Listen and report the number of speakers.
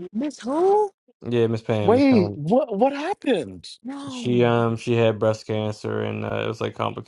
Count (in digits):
3